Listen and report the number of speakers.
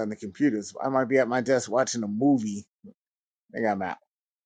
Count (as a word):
one